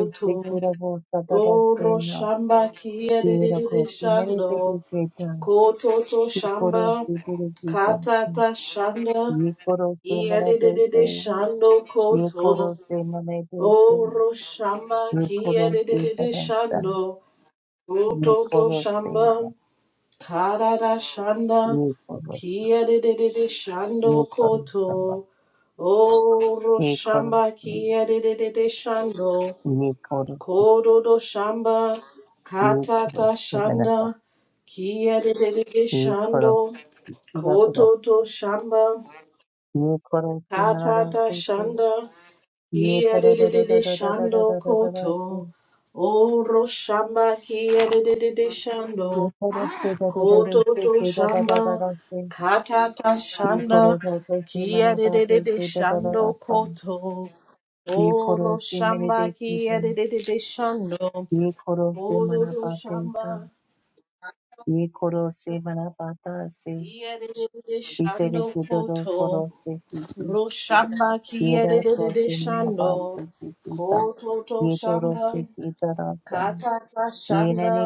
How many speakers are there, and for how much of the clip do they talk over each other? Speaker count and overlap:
two, about 38%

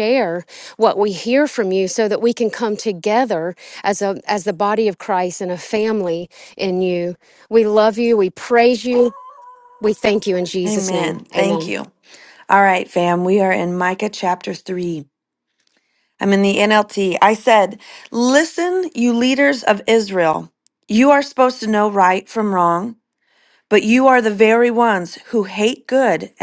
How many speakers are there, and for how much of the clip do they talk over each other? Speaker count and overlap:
two, about 4%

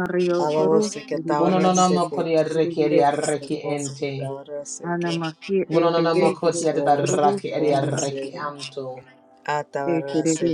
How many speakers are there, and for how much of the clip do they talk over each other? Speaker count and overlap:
three, about 65%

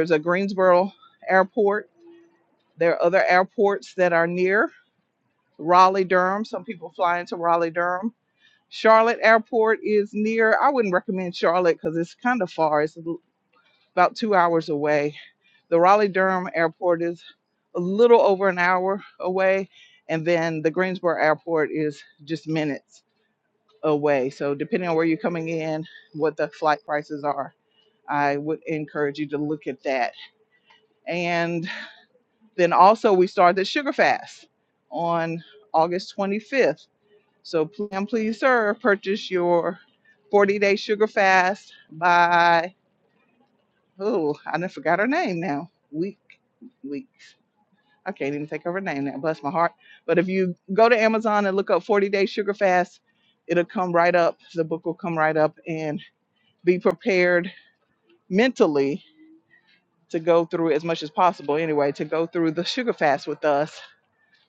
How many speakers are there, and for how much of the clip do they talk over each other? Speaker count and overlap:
one, no overlap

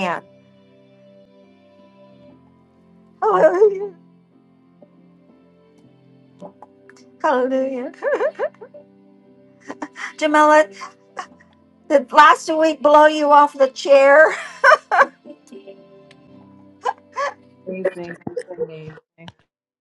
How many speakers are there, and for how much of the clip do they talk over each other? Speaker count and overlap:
two, no overlap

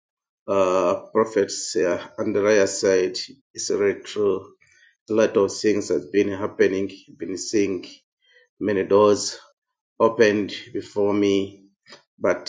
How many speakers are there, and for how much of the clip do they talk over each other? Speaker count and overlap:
one, no overlap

